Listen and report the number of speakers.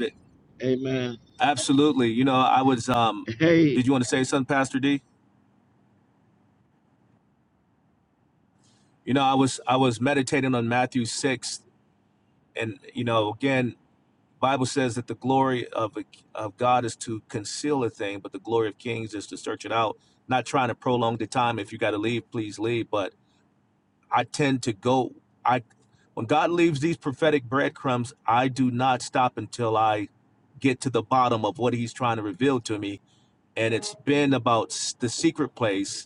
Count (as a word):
two